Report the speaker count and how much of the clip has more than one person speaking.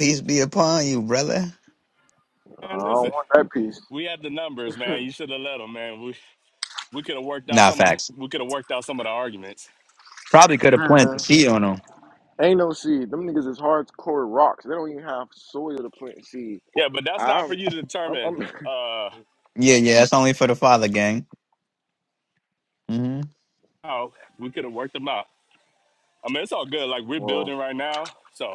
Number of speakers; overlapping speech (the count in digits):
3, about 9%